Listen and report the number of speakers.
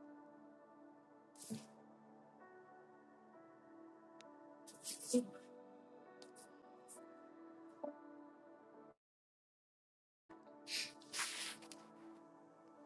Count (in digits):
0